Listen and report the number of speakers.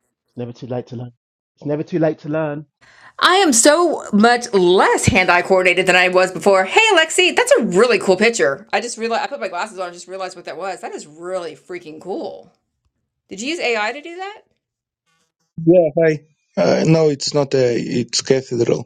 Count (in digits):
3